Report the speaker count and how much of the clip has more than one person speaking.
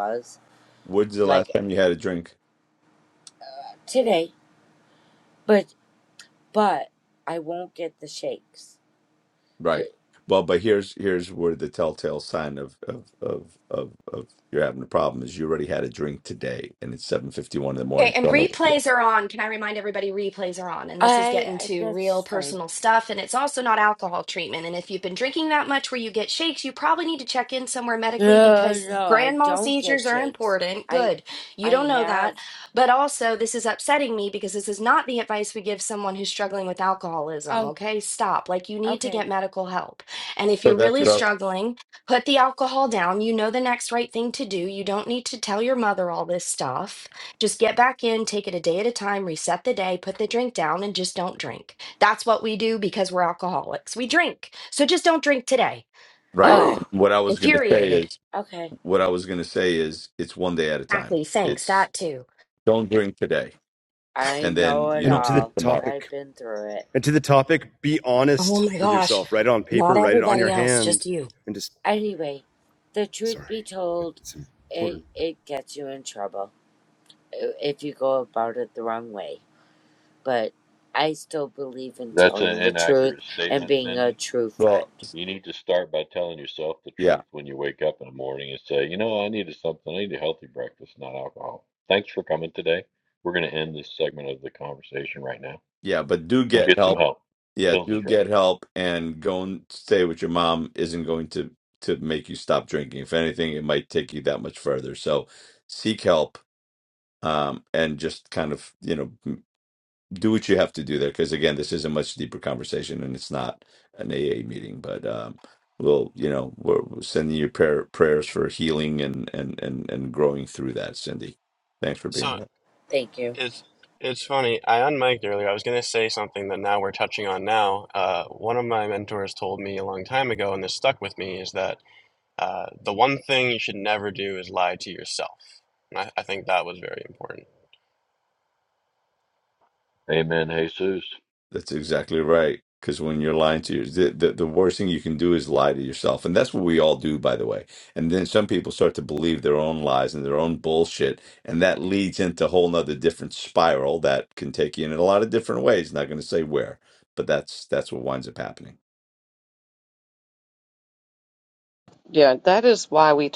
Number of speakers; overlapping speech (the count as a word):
seven, about 10%